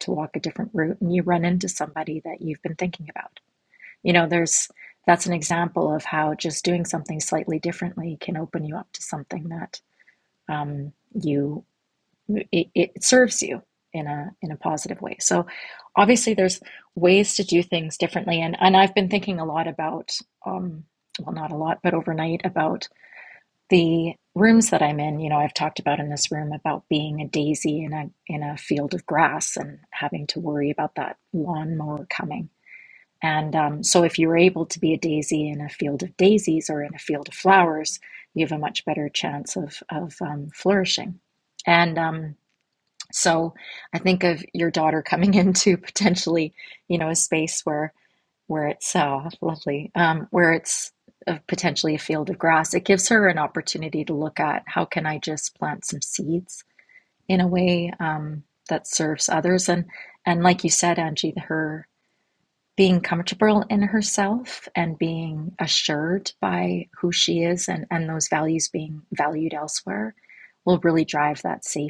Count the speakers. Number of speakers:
one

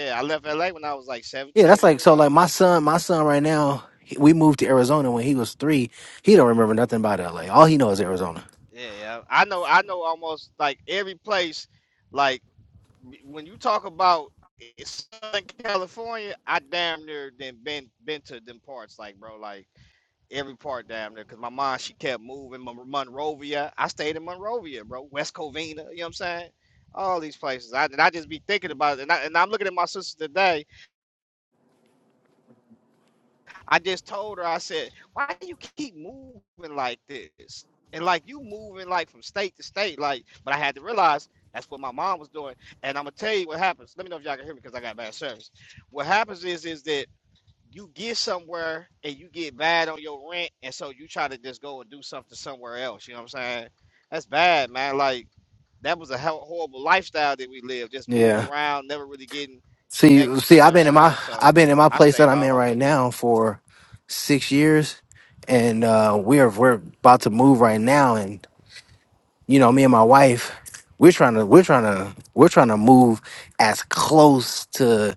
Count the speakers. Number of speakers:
two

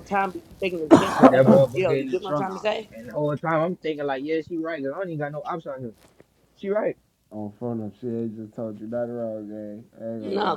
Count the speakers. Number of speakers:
three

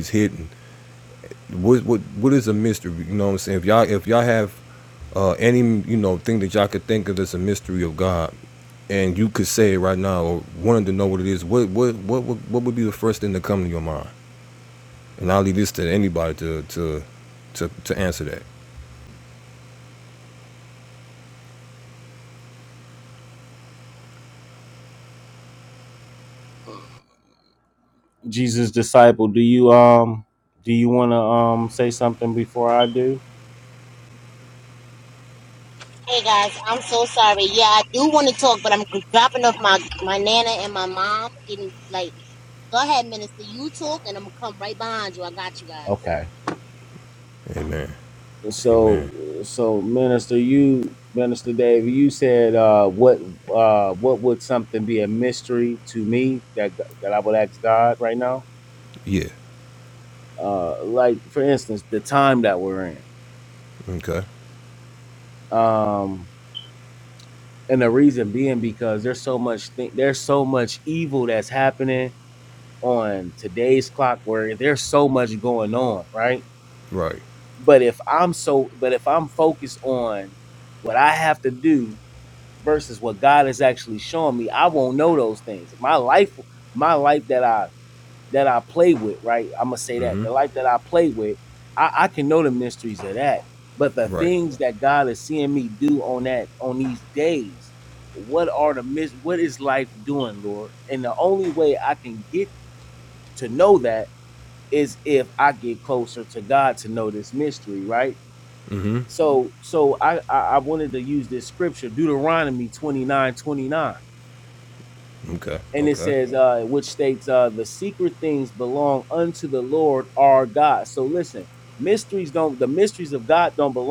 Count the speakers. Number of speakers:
three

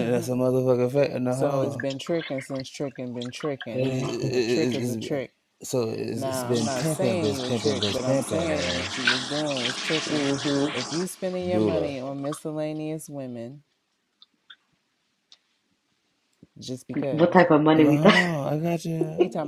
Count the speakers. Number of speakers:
three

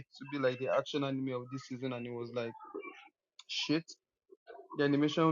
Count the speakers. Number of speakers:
one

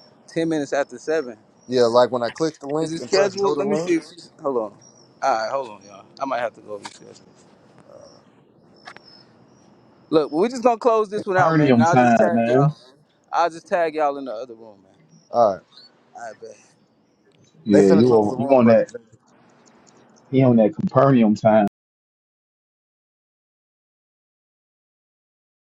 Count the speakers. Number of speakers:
three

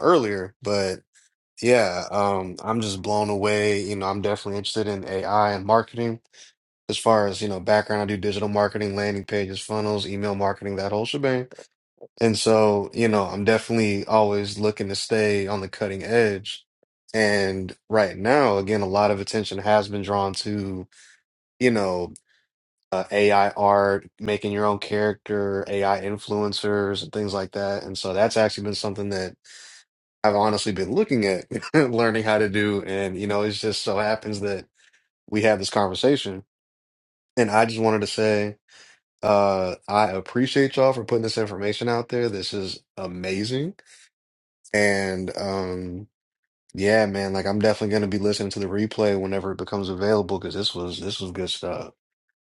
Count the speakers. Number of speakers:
one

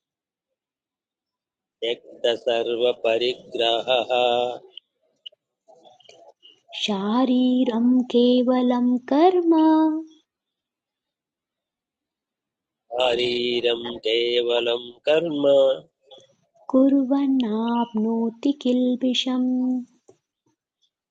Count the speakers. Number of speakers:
two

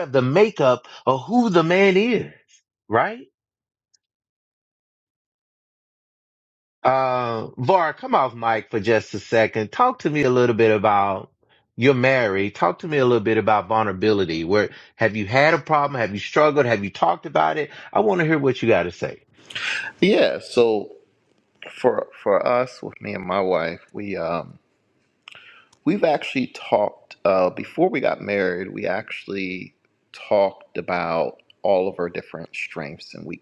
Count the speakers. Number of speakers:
two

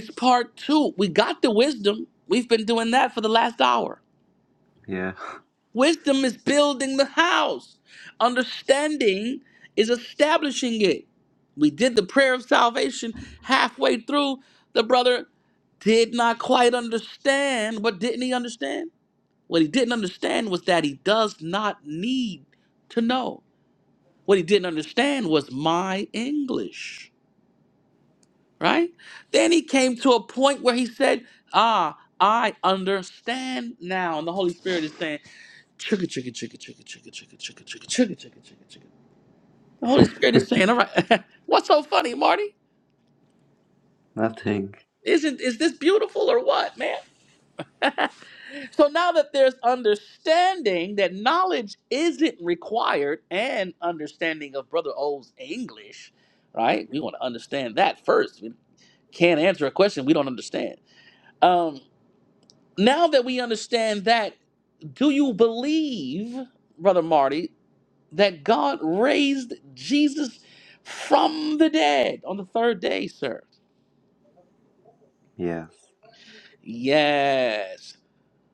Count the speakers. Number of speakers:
two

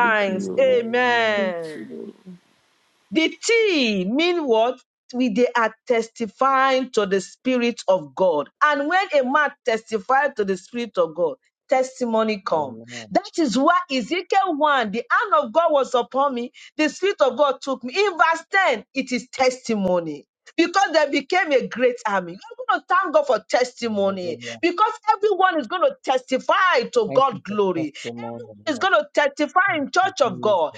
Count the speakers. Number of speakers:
three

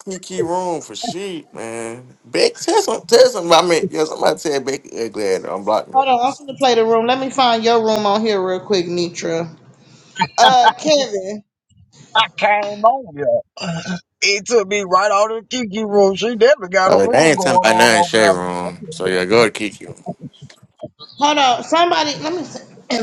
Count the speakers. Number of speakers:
three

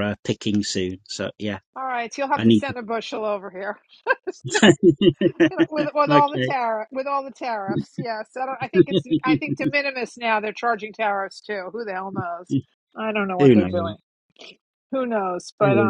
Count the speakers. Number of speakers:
two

